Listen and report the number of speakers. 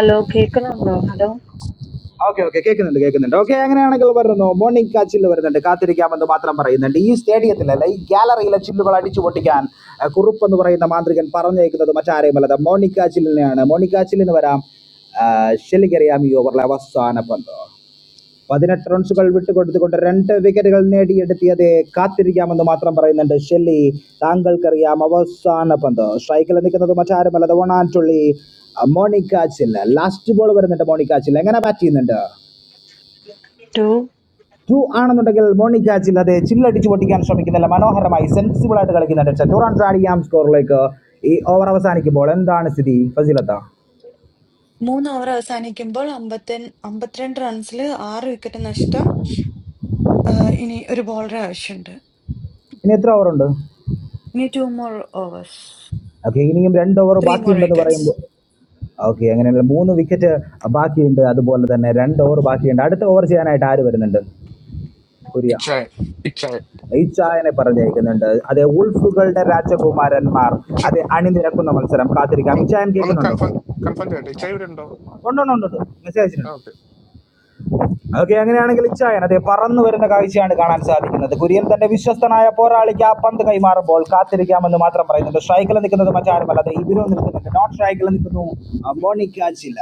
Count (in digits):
4